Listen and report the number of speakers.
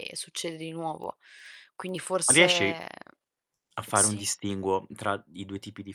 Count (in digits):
2